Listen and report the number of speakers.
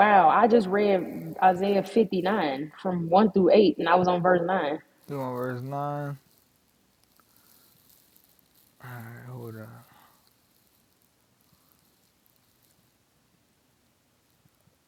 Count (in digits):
2